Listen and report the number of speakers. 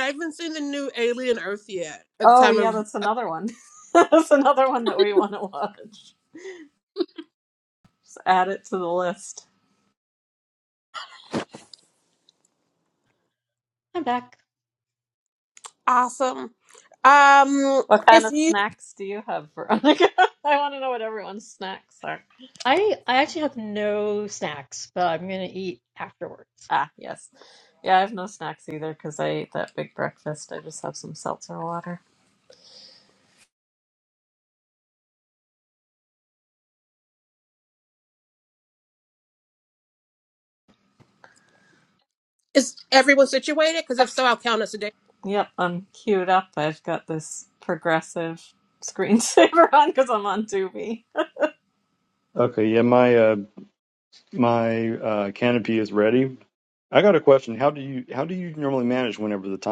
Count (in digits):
4